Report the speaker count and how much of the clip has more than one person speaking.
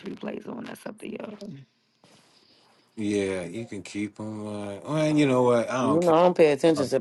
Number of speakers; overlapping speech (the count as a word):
three, about 15%